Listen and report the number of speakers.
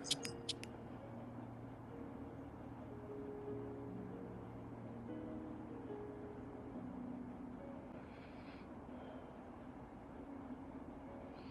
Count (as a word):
zero